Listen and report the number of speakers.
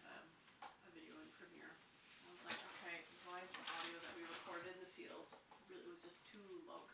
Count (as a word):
one